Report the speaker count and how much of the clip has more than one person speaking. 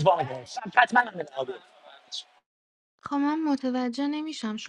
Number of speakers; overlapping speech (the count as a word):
two, no overlap